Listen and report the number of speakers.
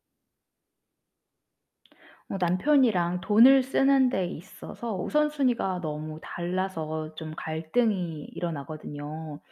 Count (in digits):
1